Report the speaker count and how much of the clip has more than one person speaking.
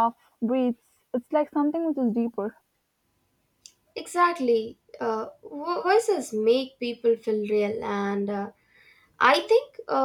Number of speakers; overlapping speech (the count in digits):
2, no overlap